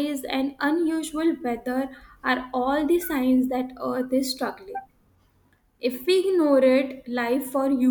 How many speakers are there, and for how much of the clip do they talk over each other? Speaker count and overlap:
1, no overlap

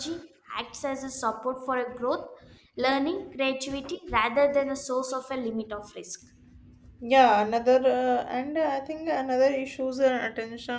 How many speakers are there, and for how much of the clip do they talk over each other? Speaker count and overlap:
2, no overlap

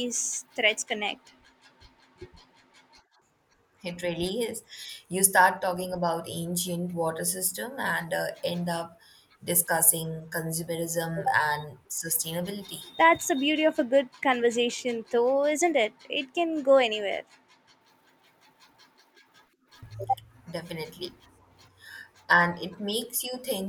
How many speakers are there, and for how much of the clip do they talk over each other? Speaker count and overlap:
2, no overlap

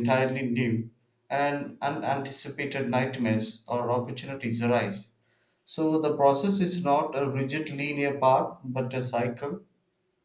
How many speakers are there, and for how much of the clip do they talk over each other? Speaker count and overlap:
1, no overlap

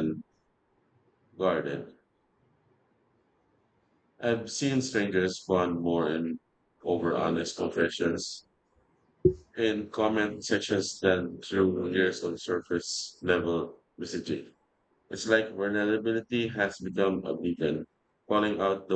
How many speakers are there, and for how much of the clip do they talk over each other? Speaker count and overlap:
1, no overlap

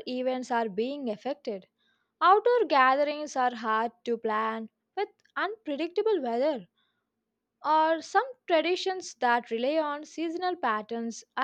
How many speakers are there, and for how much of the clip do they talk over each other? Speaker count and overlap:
1, no overlap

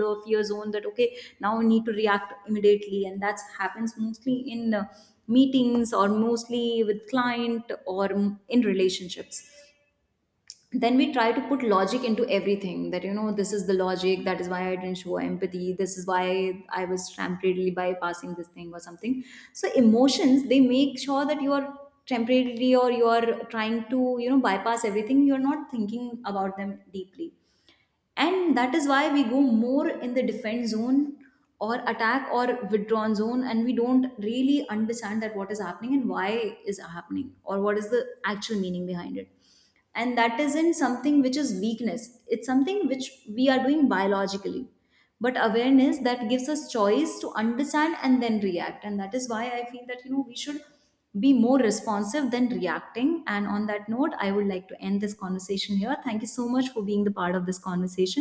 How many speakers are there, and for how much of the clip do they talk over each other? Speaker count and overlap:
1, no overlap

